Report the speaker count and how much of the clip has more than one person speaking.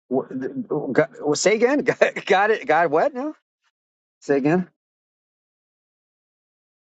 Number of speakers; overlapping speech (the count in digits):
1, no overlap